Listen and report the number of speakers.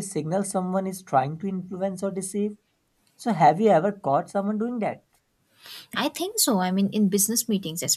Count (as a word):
two